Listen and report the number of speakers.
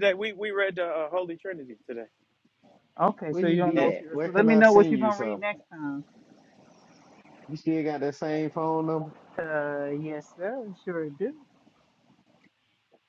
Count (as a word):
three